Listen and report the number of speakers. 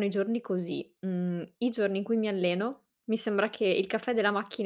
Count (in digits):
1